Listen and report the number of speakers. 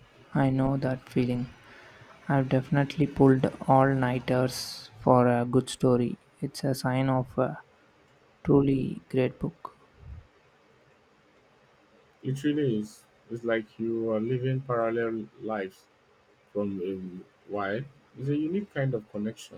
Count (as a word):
two